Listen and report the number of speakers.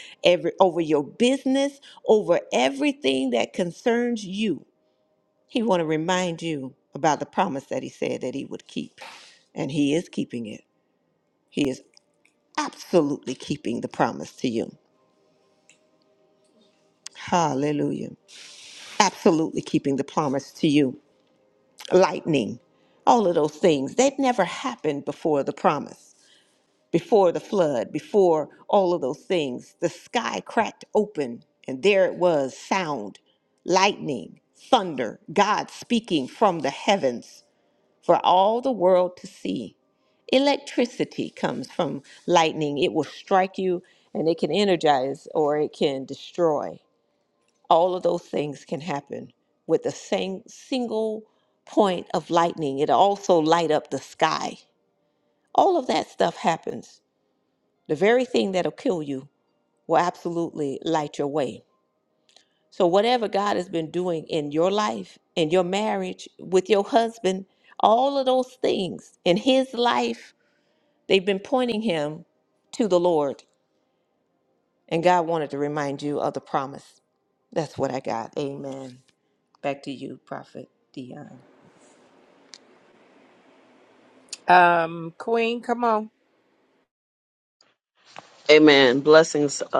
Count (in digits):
3